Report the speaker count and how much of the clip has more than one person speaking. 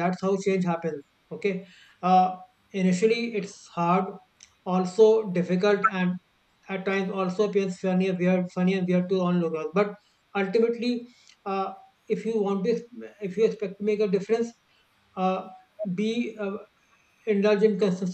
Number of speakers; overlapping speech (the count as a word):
one, no overlap